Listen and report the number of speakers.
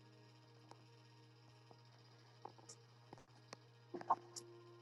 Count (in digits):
0